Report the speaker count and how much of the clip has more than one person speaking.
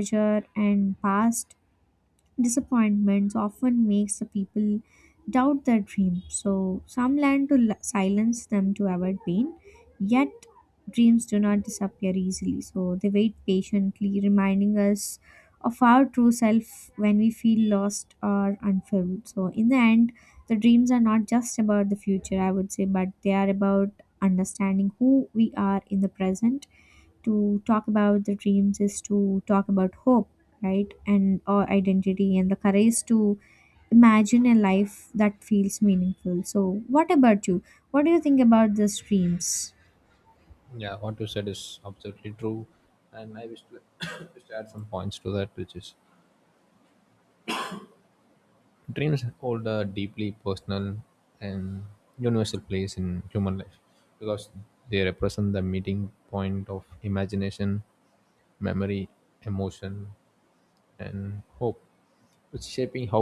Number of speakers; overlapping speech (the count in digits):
2, no overlap